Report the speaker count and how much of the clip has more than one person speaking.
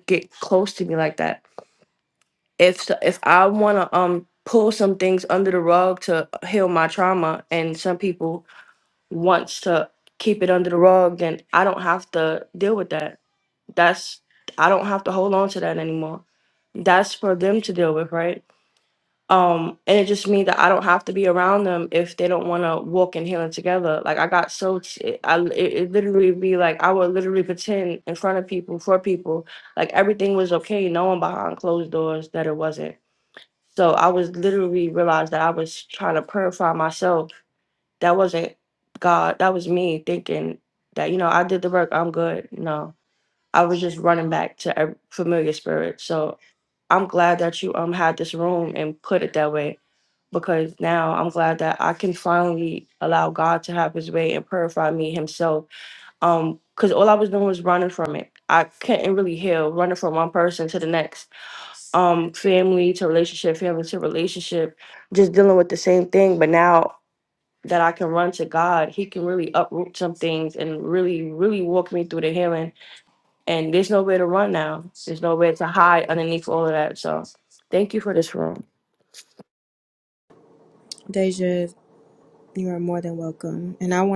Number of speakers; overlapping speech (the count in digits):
2, no overlap